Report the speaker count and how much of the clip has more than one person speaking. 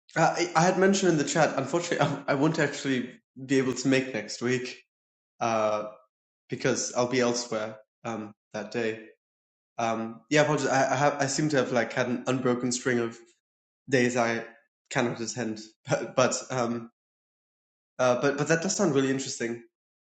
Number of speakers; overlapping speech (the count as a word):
one, no overlap